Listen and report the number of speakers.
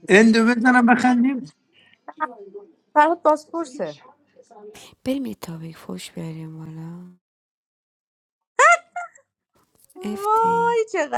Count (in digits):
3